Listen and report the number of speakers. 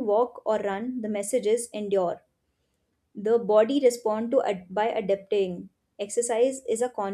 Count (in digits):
1